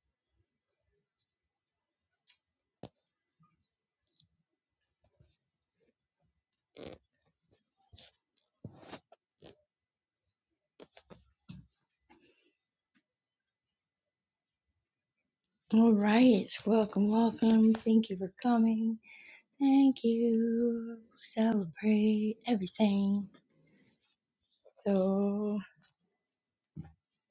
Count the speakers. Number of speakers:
1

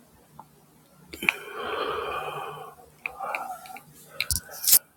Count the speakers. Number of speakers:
0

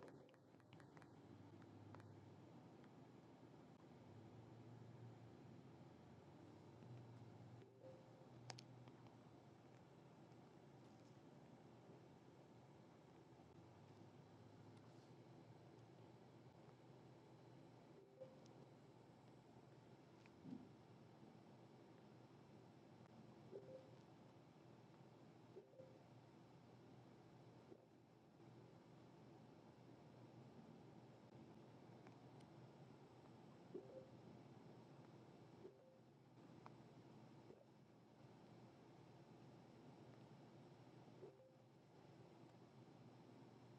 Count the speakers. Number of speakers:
0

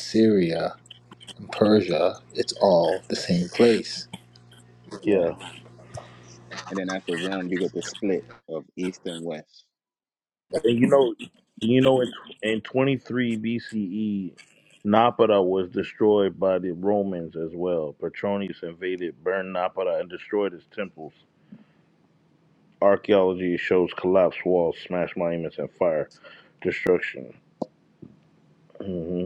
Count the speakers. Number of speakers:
3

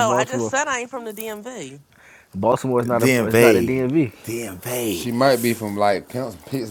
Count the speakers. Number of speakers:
4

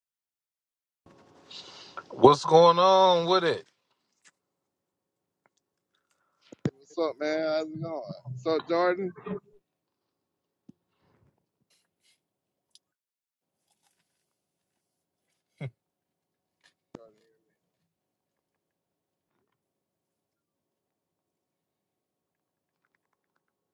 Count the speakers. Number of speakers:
2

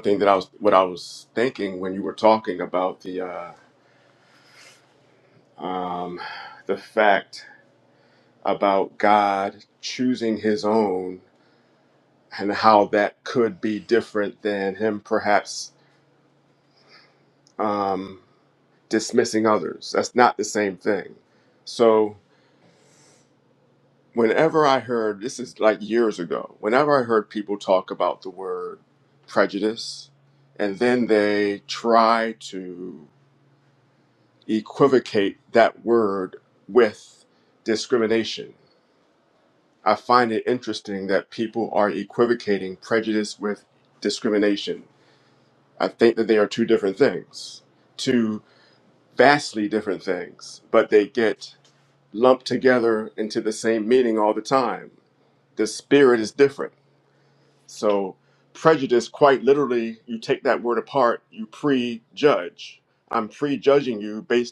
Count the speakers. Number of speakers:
1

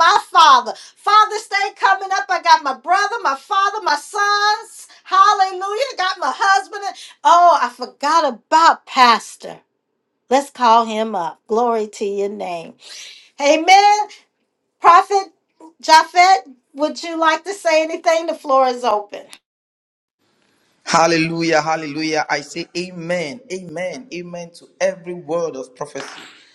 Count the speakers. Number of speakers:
2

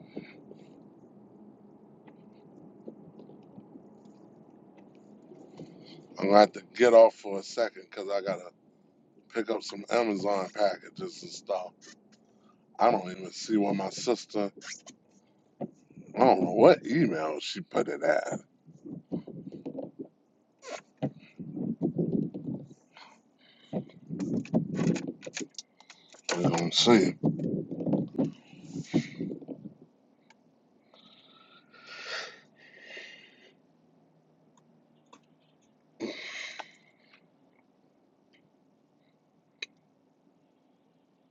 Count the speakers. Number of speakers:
1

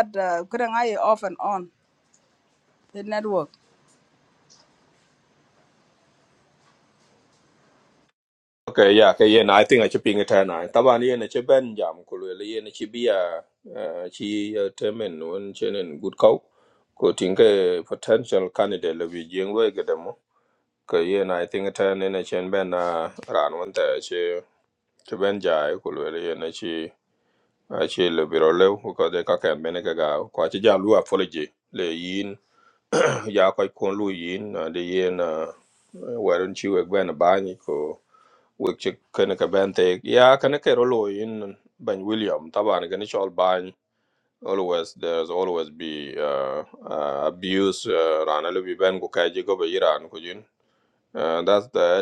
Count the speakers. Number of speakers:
2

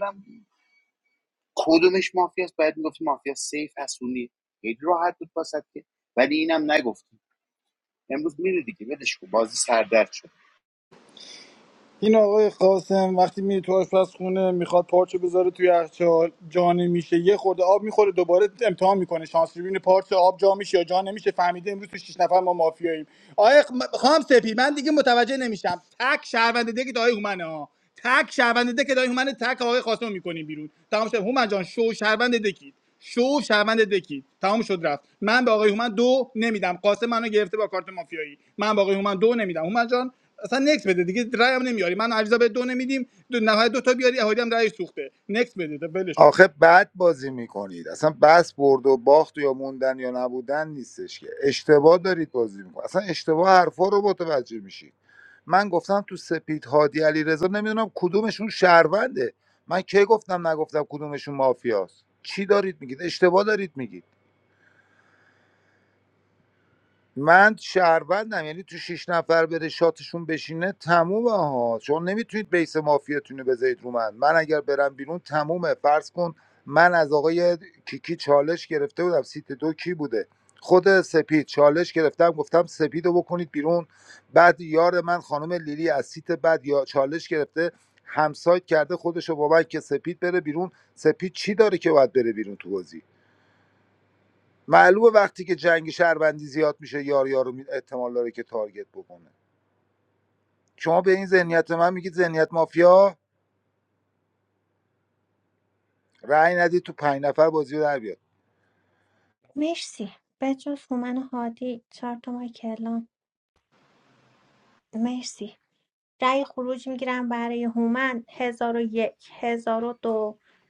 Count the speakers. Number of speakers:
4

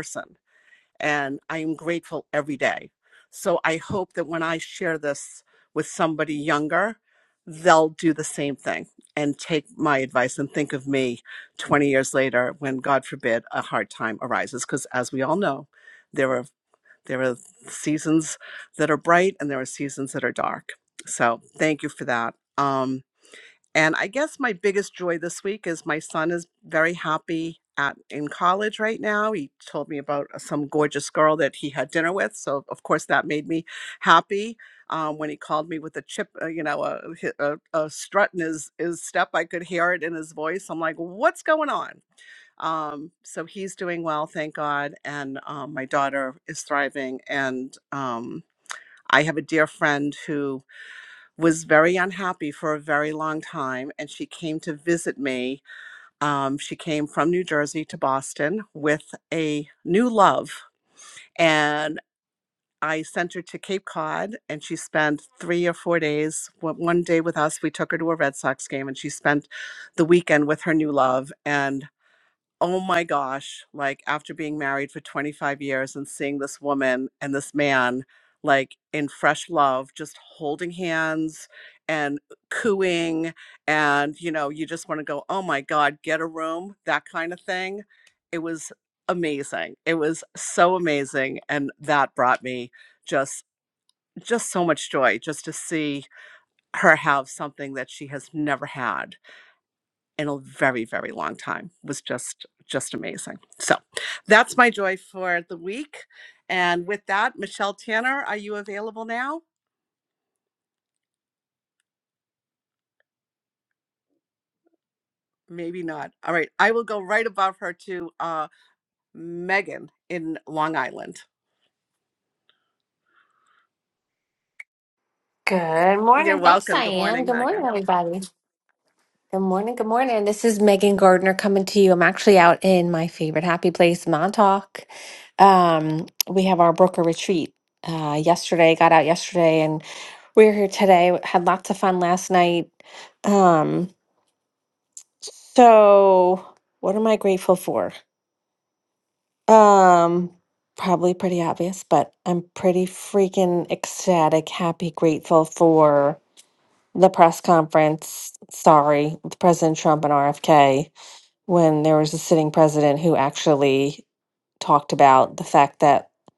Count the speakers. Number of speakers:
2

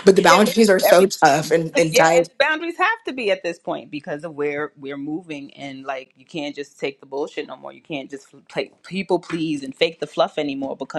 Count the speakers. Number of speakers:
2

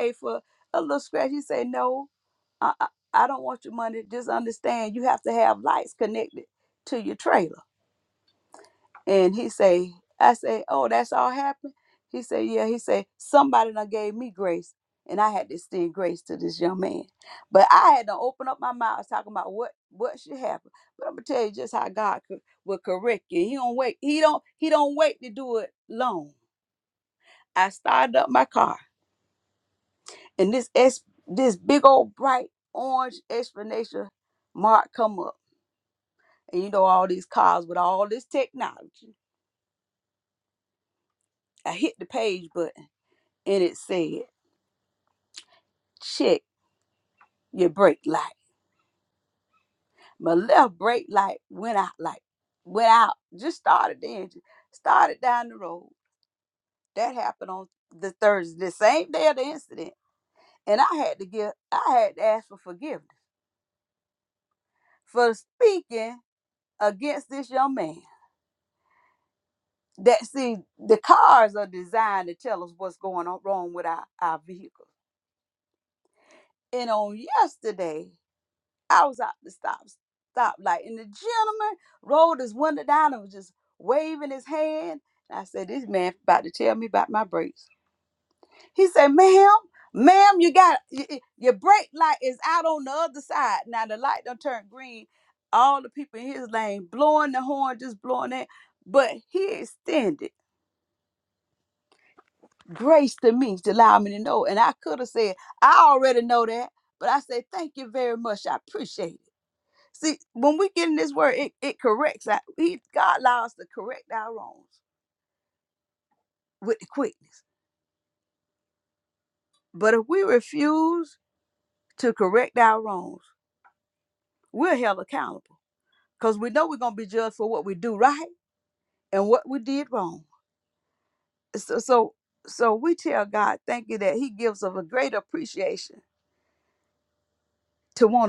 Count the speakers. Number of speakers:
1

